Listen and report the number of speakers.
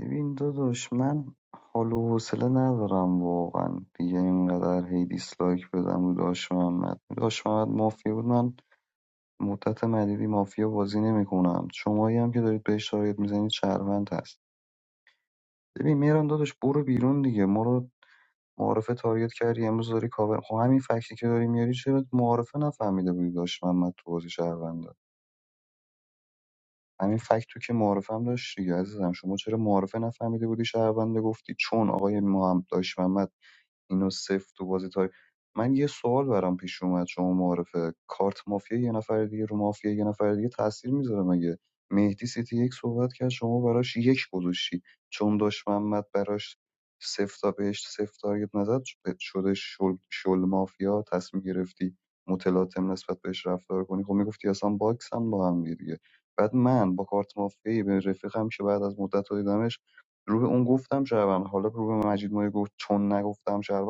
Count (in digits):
1